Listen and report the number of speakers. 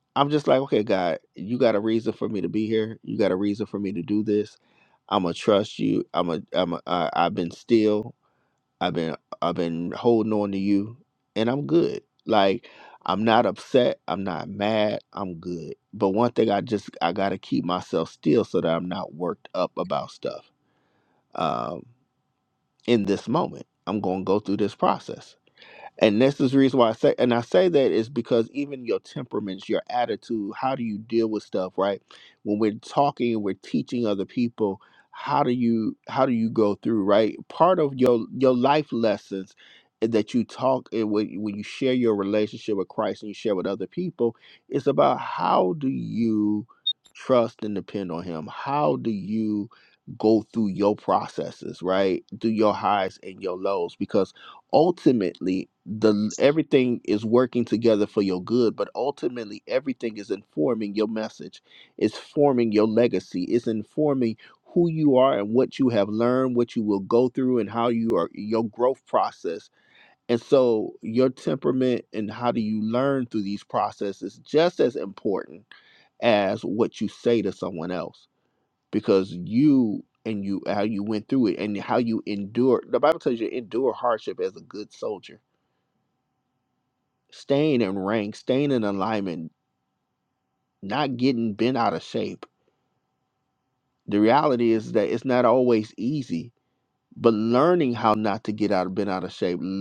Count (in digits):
1